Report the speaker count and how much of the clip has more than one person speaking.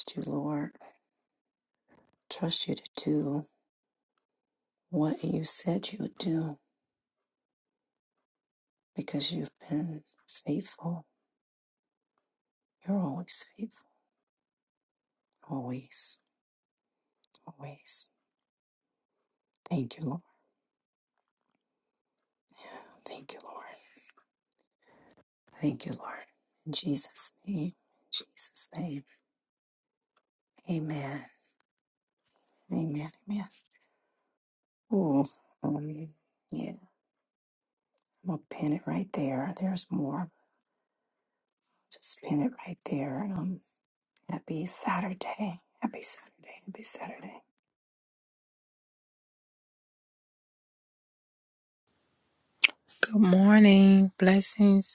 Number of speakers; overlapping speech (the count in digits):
2, no overlap